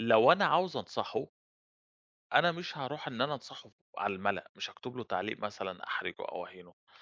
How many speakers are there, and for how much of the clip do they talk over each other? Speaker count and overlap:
1, no overlap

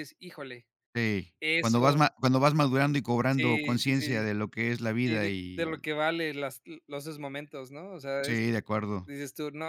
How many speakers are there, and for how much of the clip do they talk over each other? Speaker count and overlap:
2, about 22%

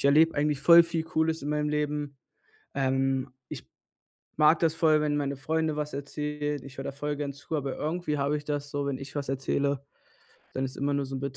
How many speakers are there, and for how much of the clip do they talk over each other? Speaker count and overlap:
1, no overlap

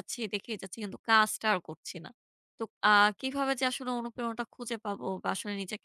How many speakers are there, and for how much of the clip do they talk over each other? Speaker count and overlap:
1, no overlap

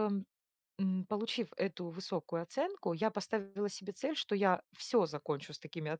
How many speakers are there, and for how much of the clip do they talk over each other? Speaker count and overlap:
1, no overlap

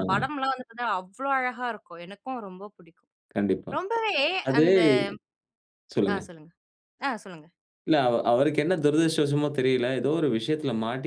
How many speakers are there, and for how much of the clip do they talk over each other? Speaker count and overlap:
2, about 5%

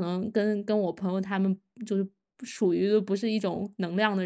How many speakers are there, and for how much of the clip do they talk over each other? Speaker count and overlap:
1, no overlap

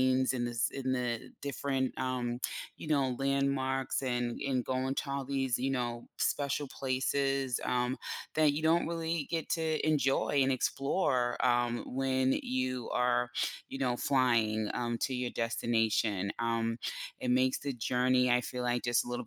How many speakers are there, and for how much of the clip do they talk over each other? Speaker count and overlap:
1, no overlap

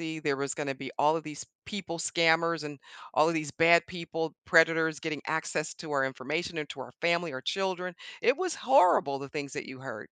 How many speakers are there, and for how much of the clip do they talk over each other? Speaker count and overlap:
1, no overlap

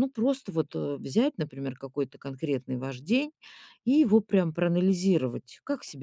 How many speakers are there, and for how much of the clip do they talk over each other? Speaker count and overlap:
1, no overlap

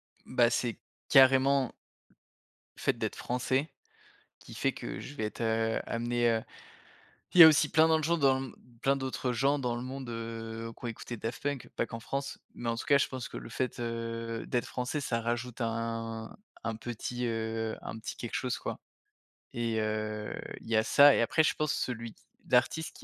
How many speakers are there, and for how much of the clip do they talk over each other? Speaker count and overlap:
1, no overlap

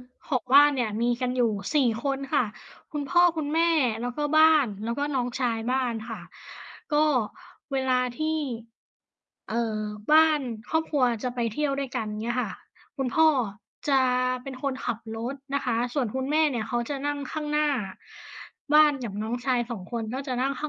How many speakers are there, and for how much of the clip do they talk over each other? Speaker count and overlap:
1, no overlap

